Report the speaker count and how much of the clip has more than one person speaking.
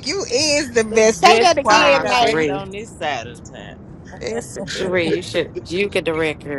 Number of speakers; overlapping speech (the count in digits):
3, about 26%